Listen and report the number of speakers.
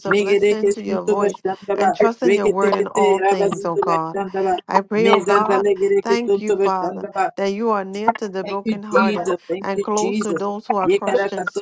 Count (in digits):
2